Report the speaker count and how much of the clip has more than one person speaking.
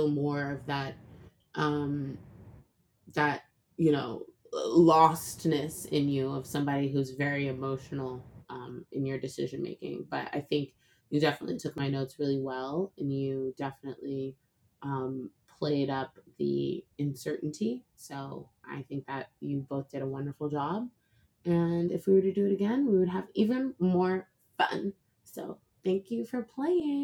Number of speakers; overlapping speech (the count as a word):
one, no overlap